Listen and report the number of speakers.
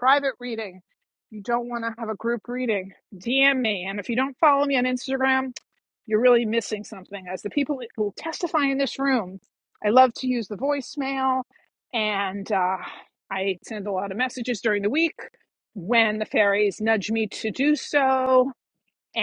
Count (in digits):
1